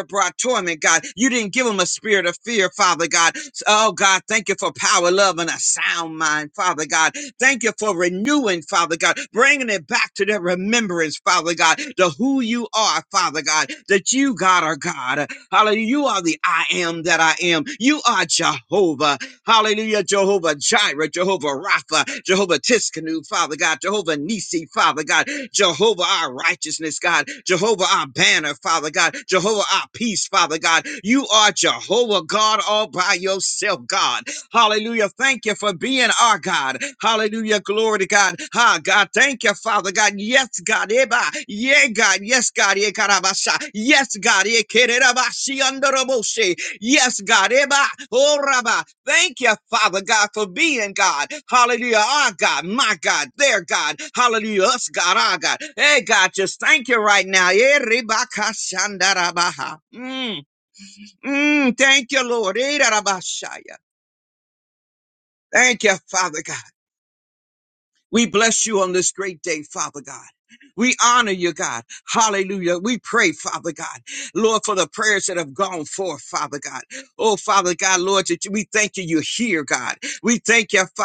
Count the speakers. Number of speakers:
1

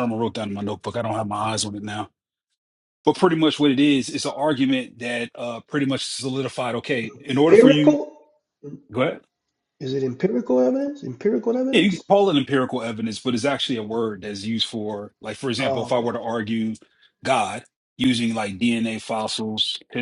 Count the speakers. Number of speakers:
2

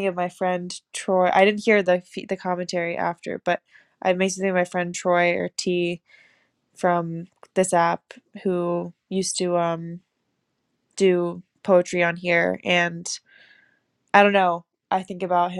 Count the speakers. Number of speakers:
1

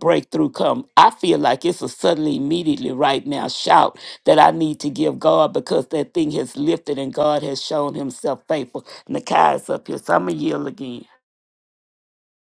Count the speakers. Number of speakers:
1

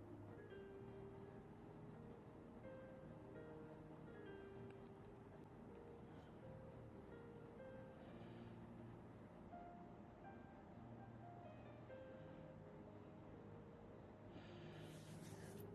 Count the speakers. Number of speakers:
0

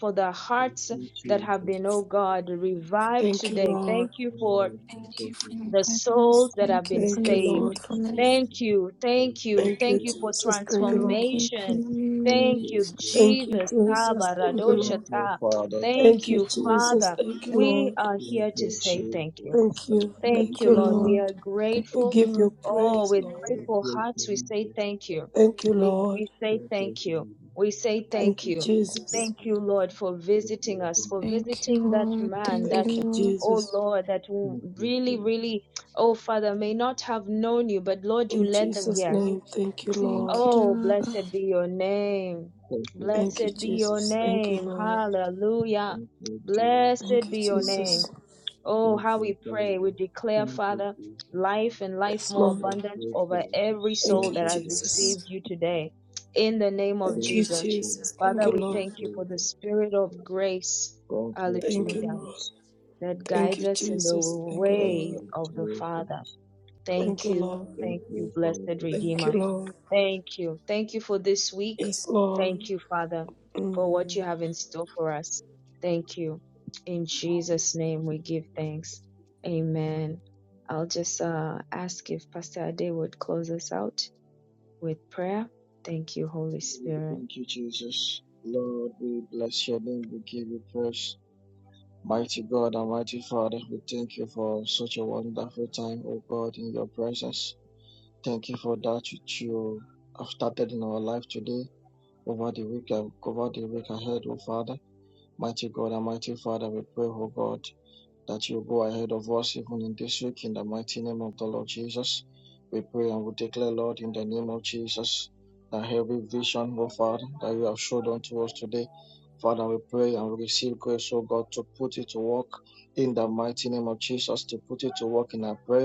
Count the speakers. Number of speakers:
4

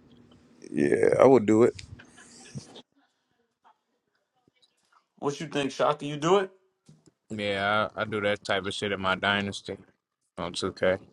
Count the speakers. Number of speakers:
3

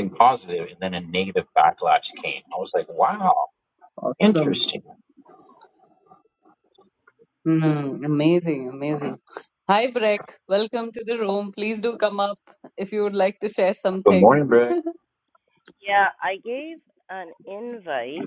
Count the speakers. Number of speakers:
3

